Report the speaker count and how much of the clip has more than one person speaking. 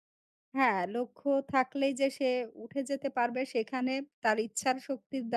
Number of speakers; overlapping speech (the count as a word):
one, no overlap